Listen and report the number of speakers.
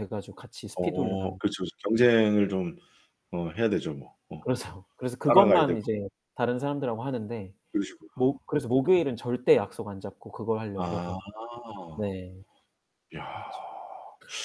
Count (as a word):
two